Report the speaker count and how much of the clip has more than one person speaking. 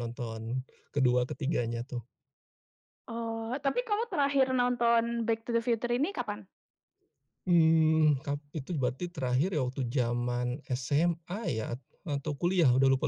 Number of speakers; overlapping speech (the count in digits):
2, no overlap